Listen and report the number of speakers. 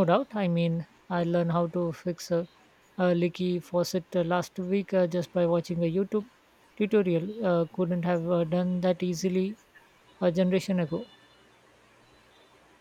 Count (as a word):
one